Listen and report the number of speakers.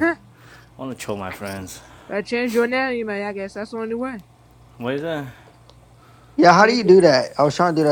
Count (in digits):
3